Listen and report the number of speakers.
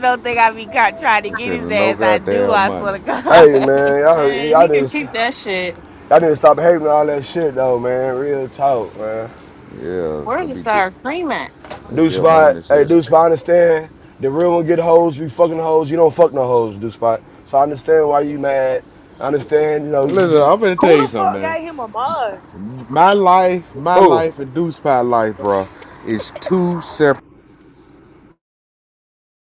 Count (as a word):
five